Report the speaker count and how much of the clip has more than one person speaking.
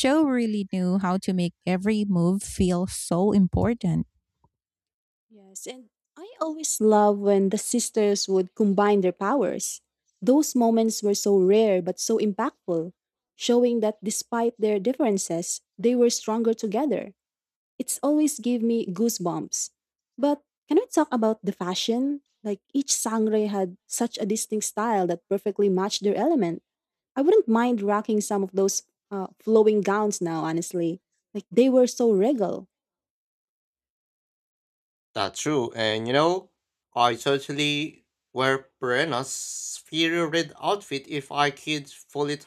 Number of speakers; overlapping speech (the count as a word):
three, no overlap